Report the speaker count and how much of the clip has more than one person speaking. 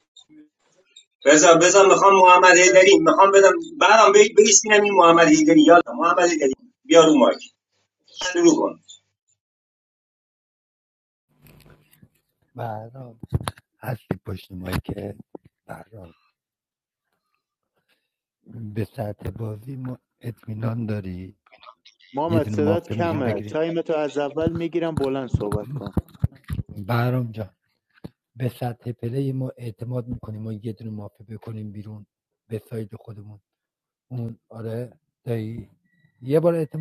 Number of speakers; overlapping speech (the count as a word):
three, about 3%